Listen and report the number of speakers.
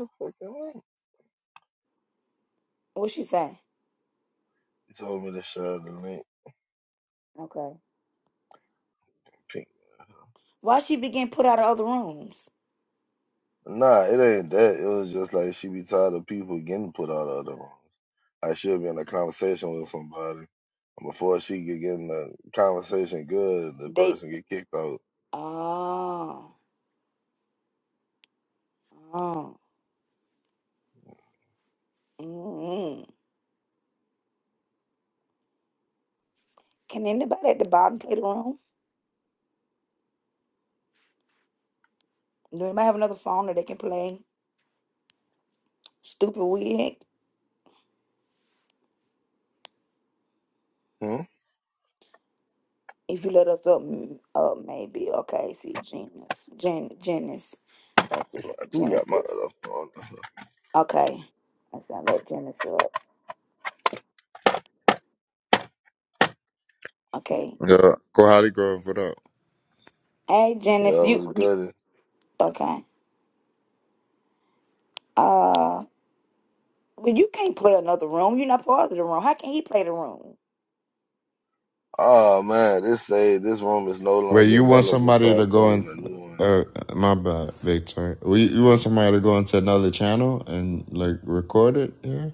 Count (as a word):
three